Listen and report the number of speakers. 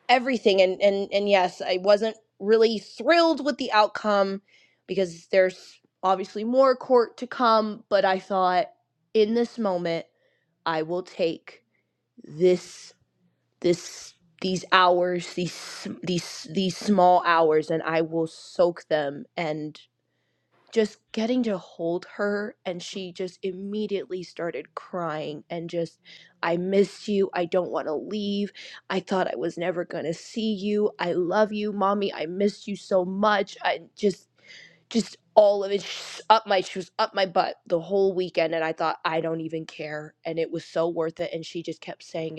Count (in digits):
1